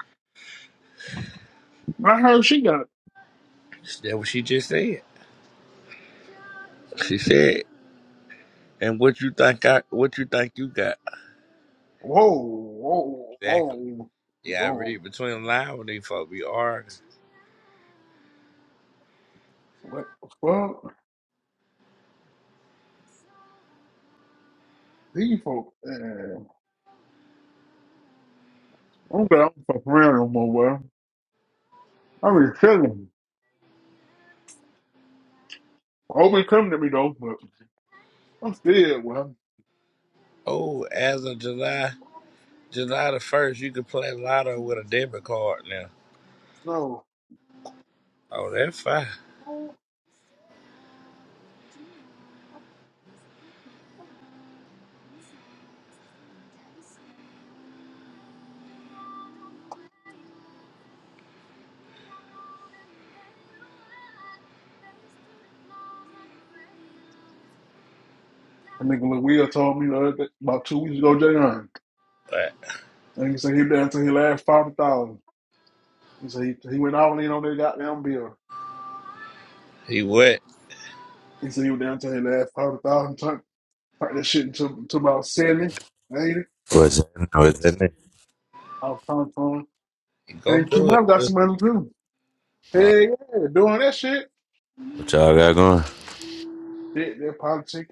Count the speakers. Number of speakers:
three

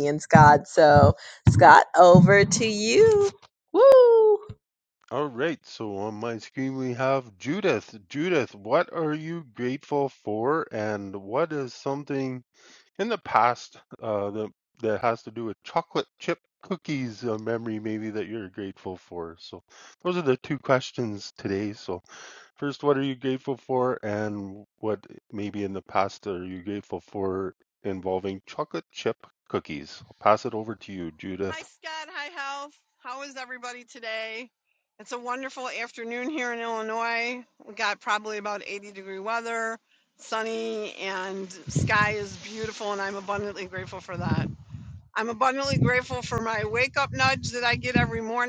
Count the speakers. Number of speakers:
three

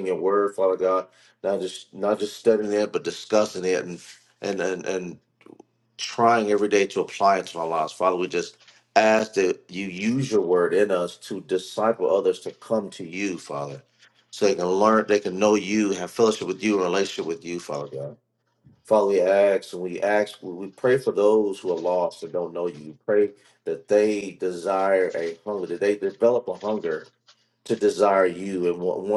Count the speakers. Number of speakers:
one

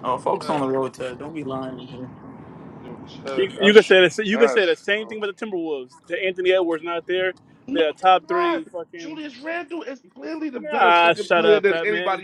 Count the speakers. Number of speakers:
three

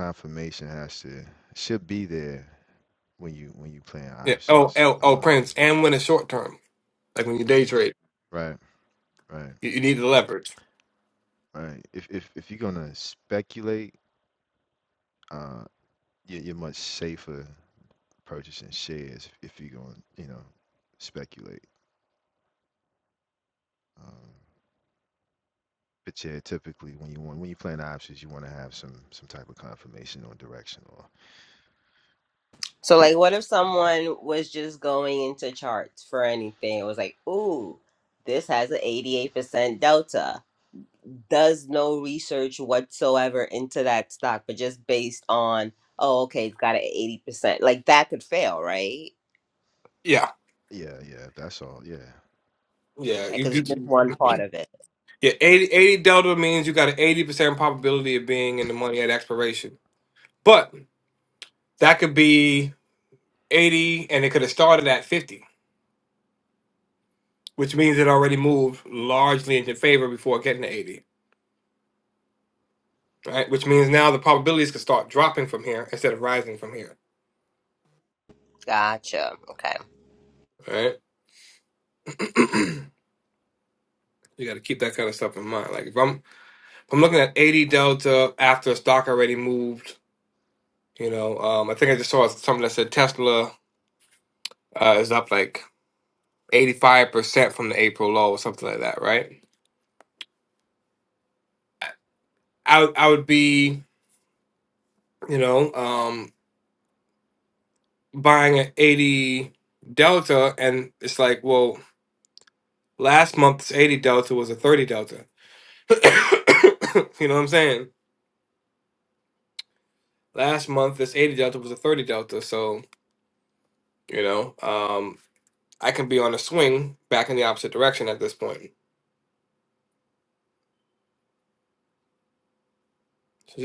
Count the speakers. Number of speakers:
three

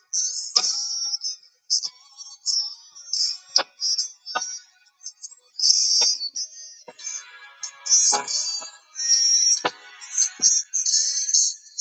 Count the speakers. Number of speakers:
zero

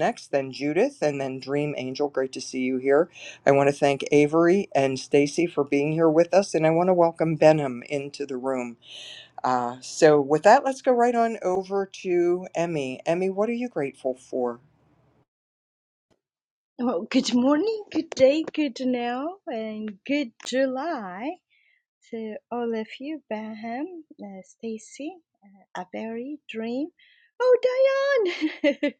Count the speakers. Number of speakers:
two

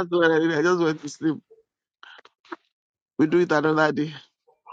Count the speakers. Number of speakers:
one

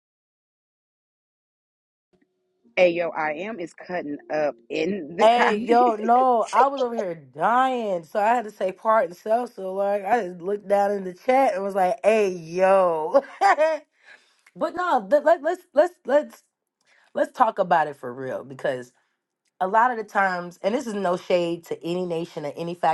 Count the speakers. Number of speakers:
two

